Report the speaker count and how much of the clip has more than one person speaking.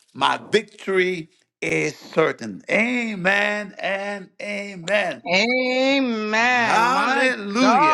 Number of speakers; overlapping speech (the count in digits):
2, about 10%